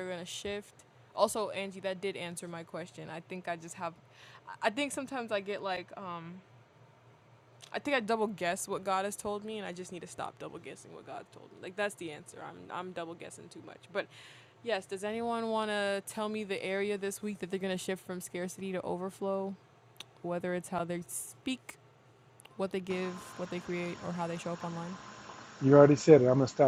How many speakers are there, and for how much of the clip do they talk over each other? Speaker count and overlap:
two, no overlap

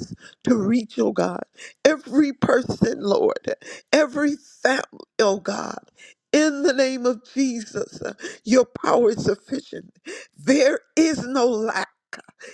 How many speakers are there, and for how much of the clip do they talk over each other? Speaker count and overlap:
one, no overlap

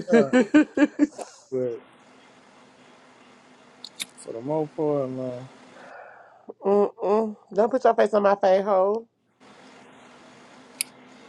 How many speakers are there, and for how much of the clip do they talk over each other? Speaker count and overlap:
two, about 3%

